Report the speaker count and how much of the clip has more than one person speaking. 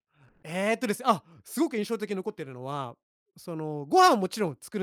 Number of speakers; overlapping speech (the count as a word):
one, no overlap